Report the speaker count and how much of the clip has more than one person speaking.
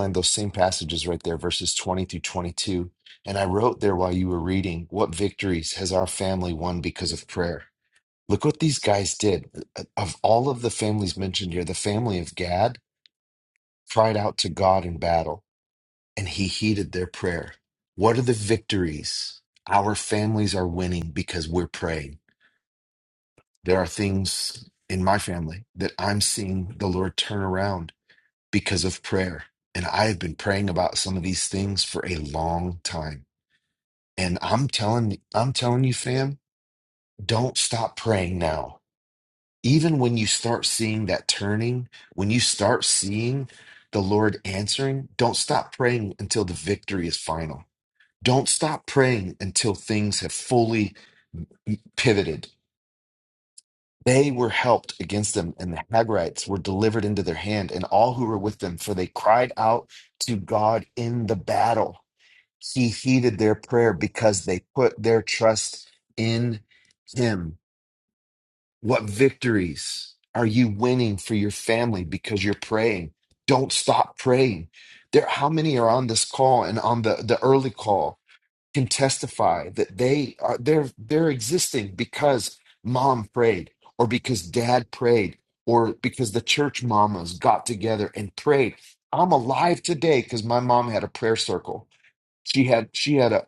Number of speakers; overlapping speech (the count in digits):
1, no overlap